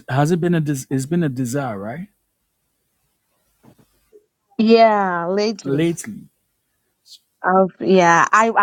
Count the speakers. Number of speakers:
2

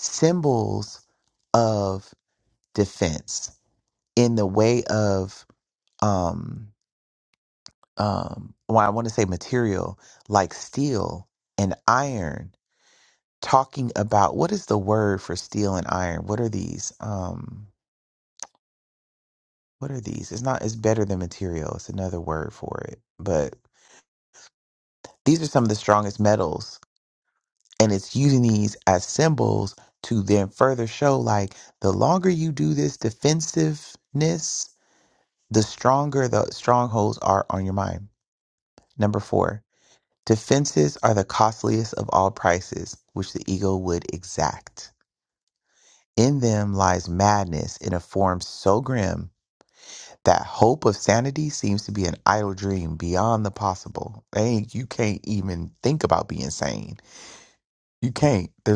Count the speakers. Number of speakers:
1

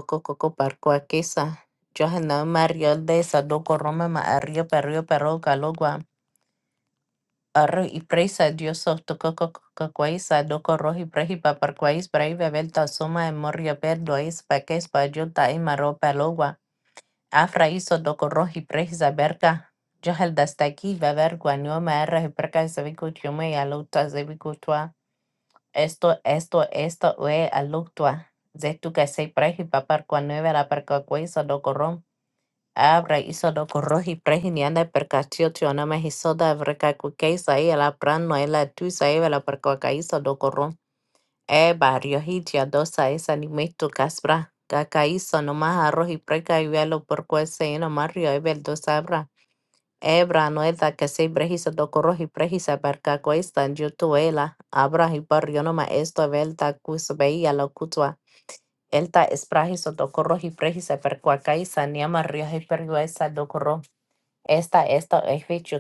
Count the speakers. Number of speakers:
1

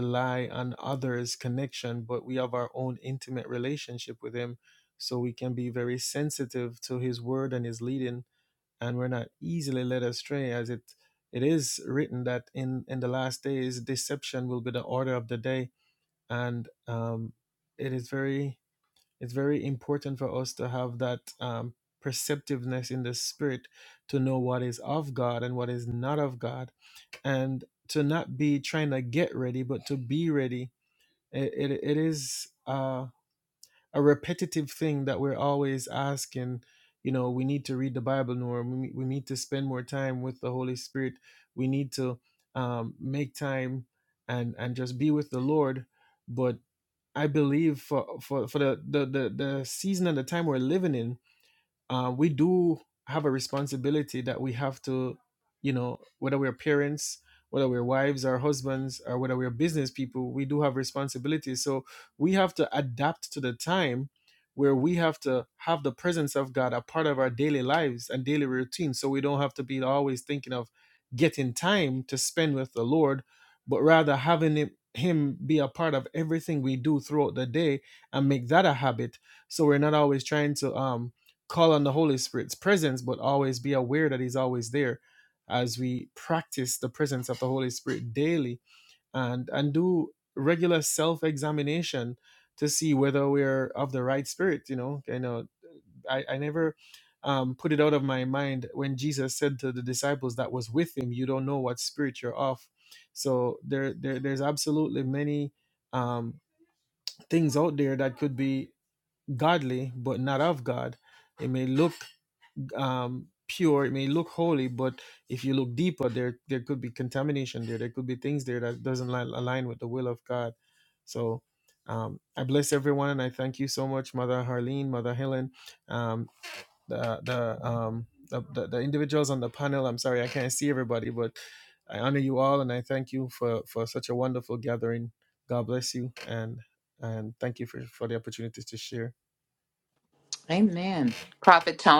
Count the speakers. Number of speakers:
2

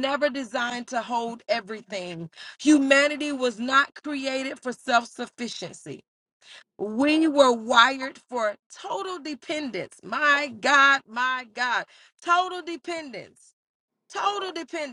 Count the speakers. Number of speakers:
1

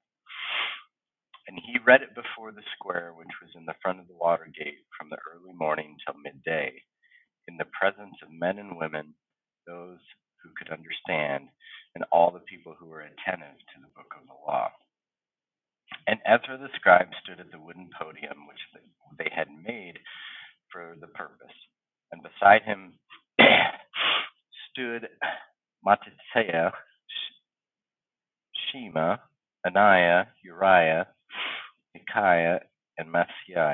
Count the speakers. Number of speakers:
1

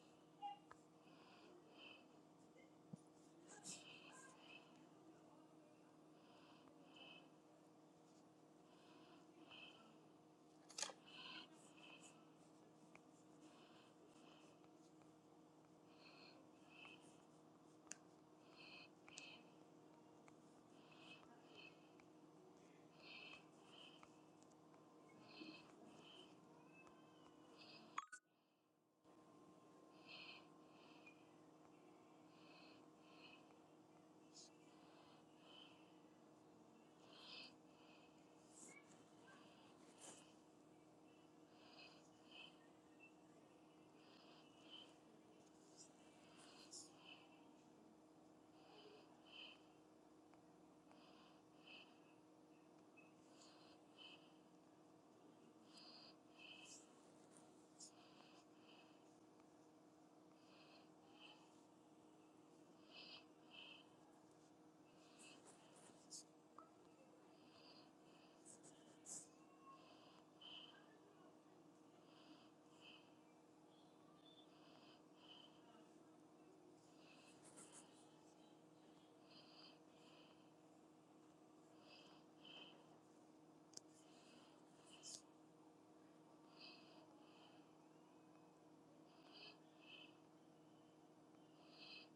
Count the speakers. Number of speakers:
0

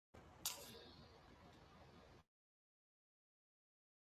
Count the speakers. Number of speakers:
0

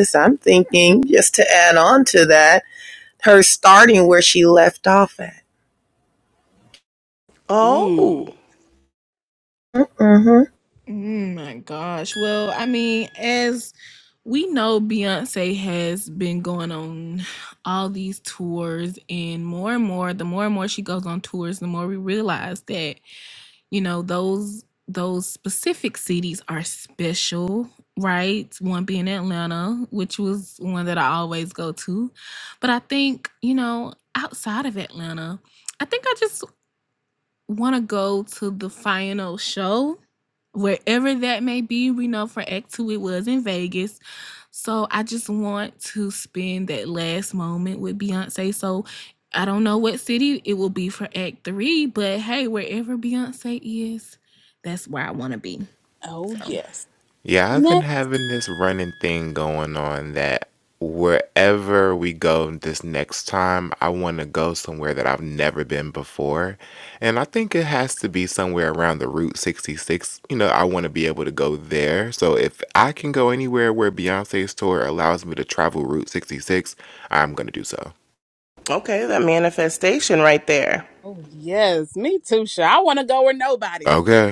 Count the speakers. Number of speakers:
5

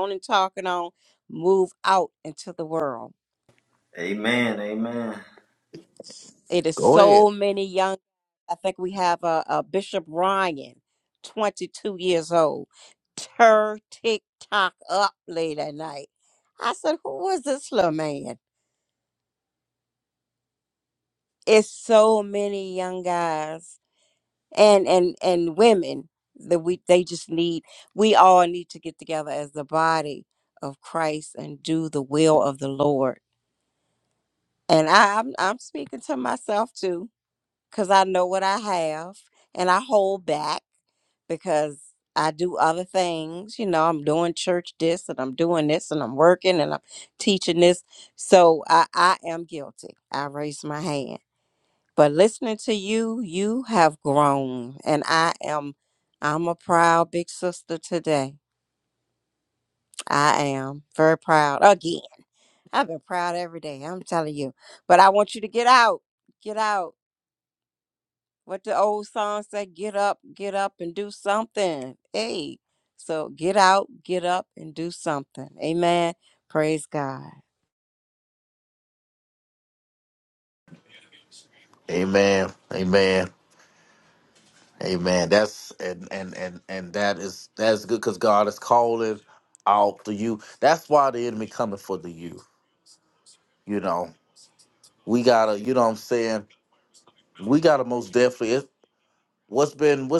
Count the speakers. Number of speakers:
3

